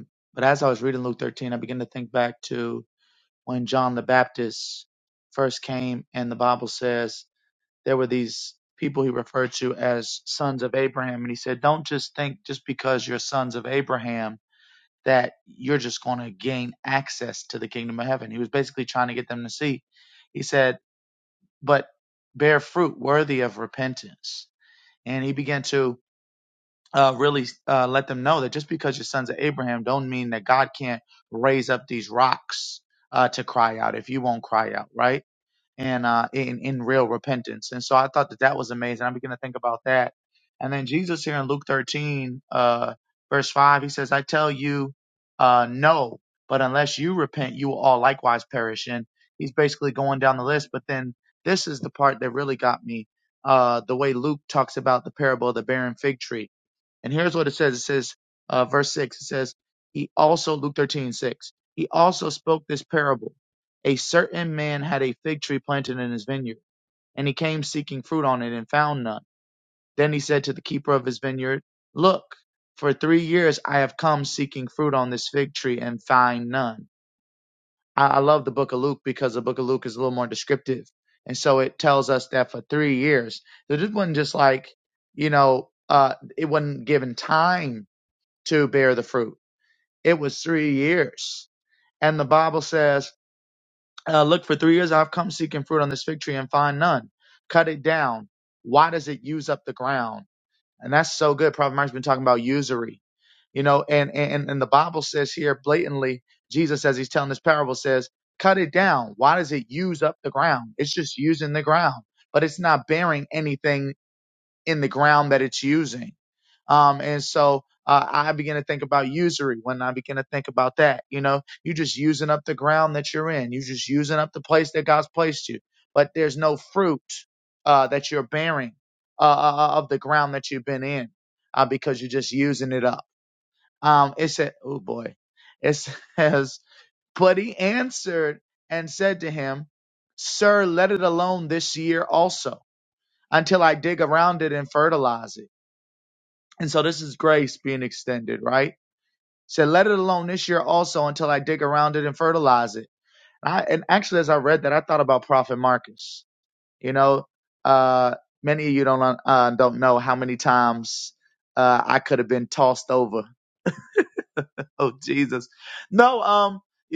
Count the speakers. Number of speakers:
one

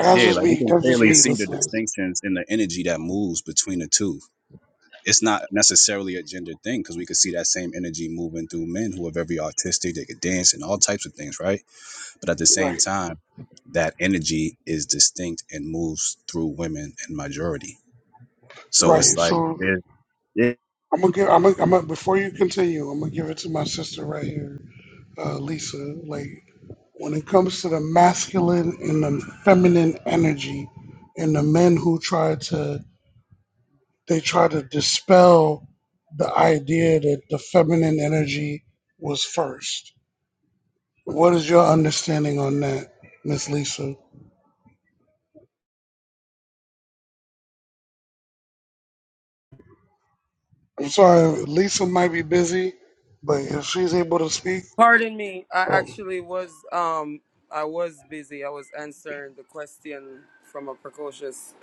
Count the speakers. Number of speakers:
three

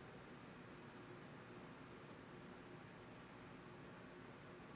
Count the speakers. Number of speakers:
zero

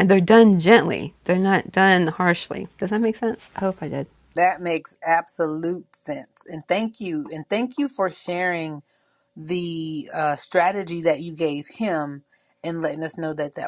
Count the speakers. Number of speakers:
two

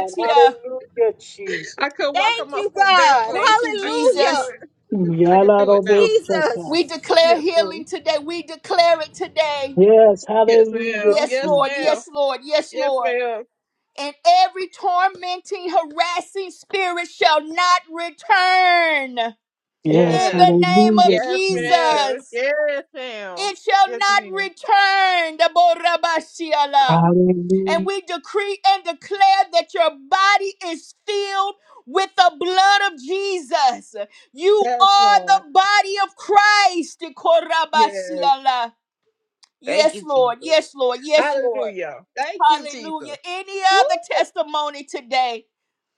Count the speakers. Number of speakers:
four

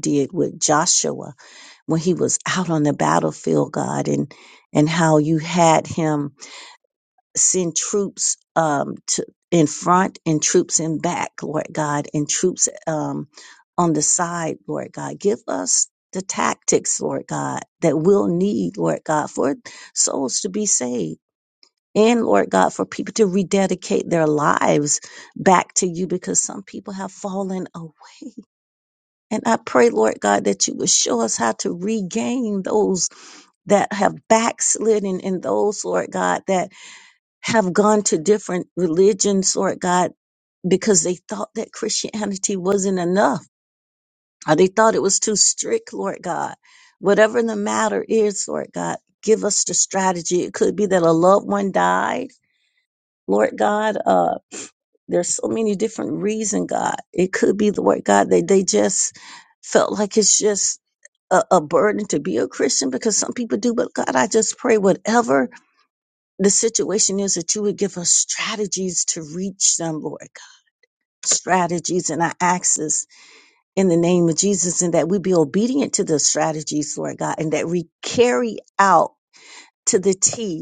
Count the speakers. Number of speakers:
one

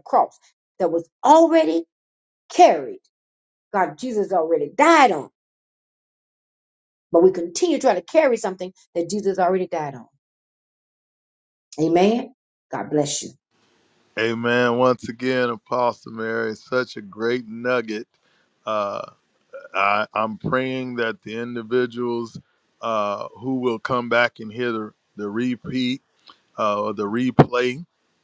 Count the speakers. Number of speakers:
two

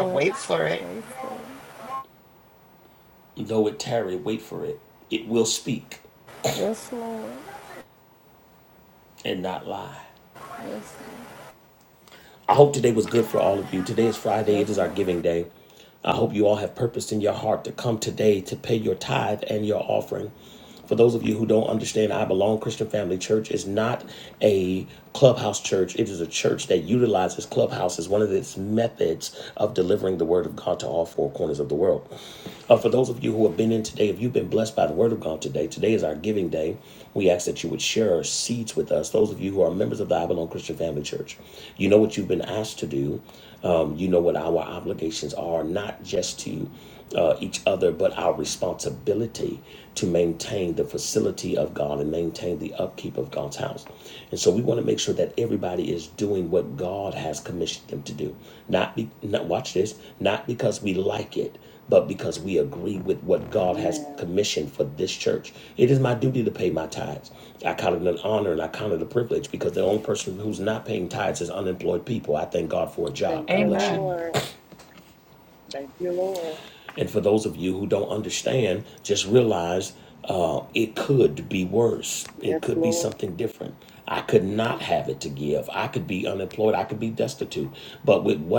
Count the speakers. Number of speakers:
four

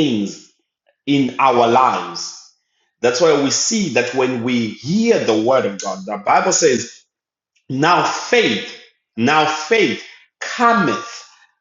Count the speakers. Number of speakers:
one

